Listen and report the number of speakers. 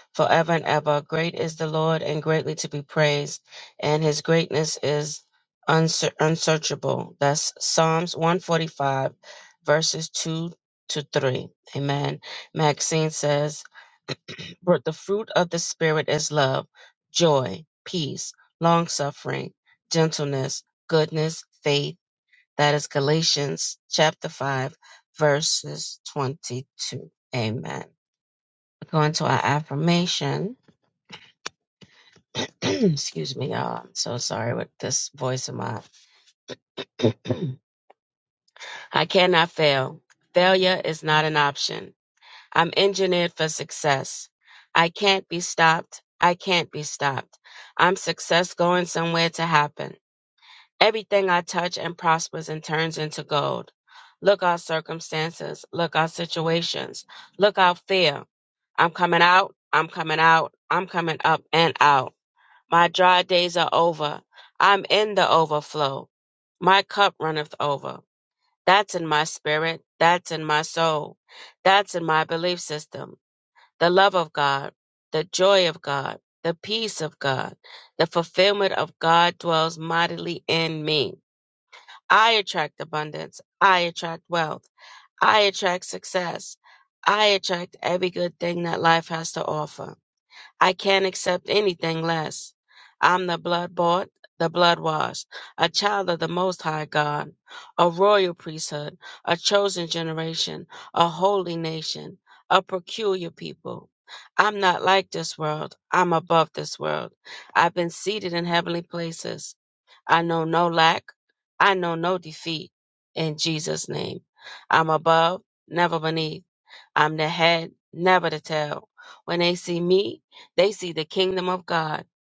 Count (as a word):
one